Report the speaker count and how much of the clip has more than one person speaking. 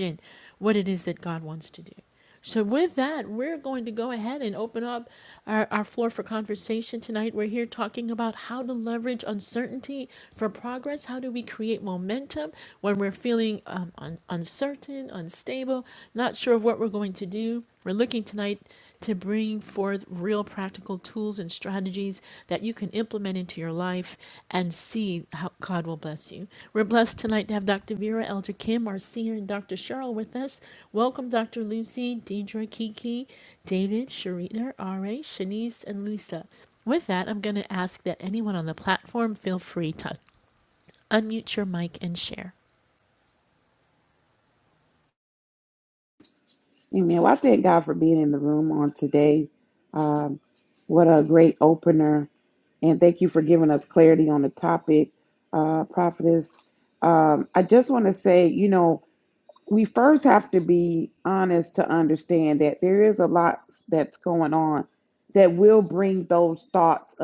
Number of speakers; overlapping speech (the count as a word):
two, no overlap